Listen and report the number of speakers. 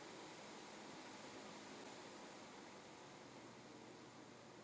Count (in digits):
0